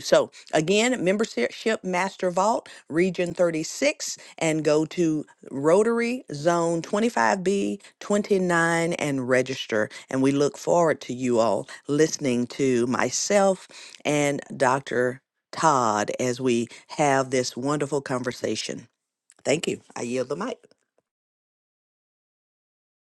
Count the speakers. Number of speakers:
1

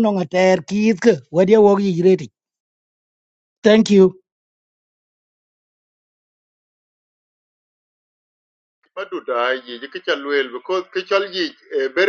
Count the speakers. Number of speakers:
2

